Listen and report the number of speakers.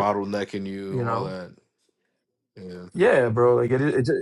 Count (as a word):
two